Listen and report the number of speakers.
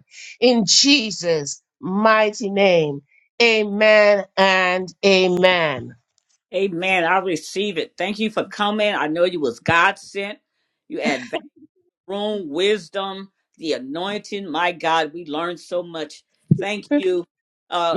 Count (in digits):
2